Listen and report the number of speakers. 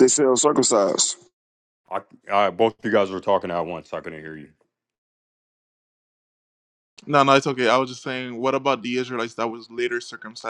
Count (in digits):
3